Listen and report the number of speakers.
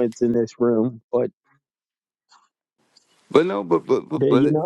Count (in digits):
2